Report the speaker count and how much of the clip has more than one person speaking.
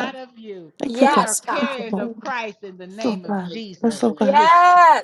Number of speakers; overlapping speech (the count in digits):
2, about 18%